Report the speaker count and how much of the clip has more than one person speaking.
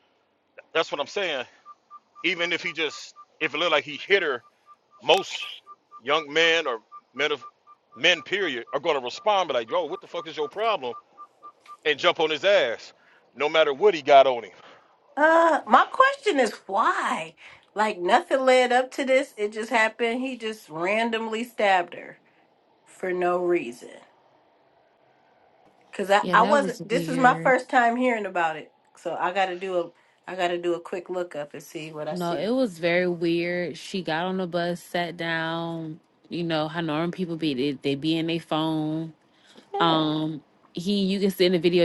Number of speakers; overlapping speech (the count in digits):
3, about 5%